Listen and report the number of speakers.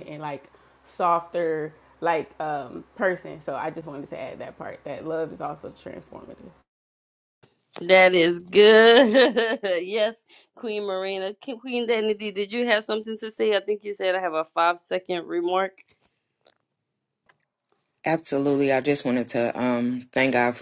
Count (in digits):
3